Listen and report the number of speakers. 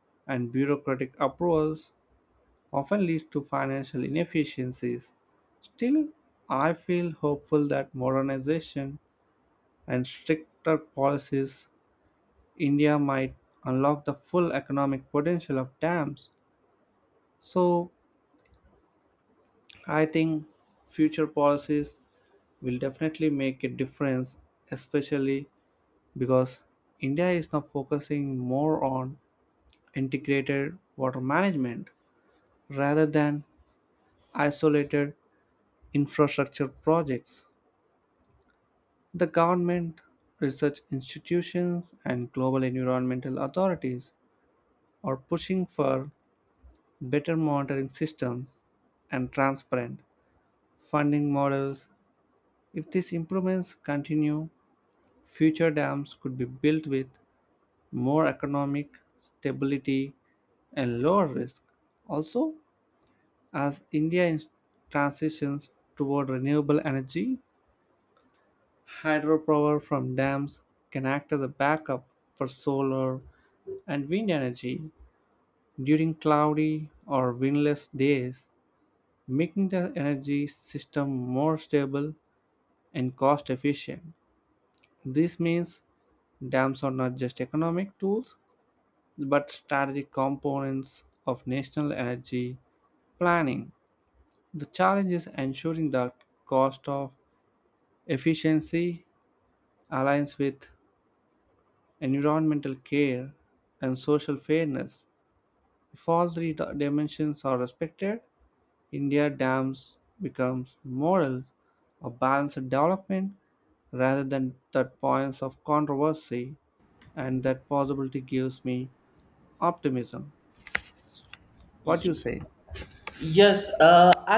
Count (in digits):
2